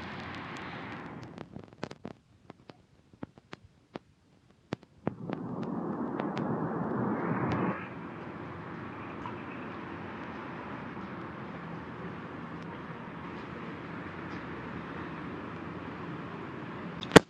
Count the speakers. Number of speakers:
zero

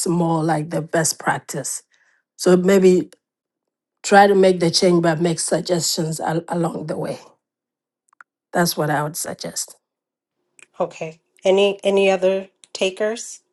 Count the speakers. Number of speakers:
two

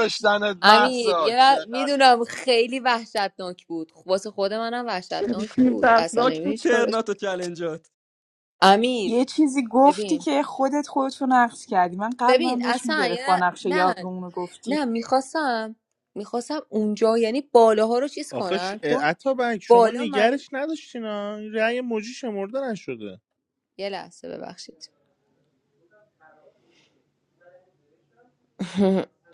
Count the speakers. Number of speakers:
five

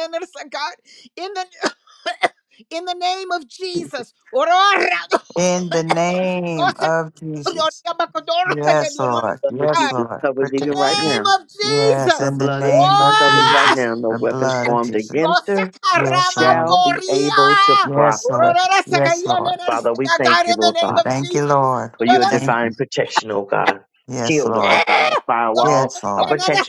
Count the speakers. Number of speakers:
three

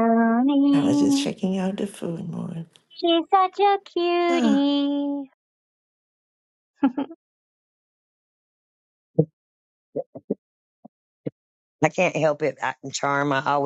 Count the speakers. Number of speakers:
three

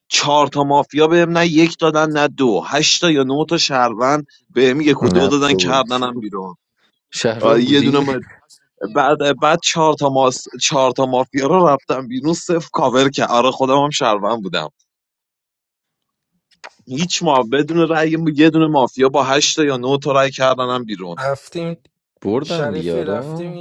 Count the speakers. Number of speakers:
three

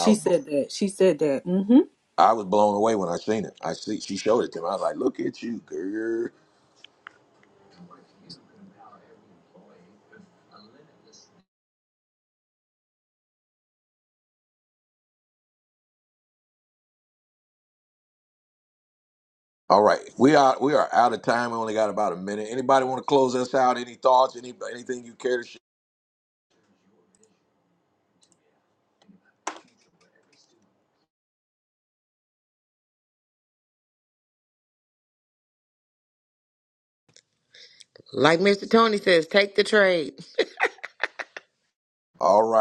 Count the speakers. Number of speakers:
three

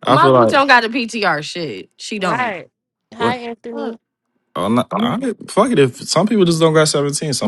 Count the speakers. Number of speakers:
three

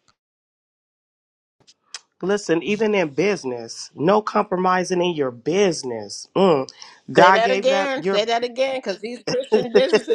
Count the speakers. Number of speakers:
two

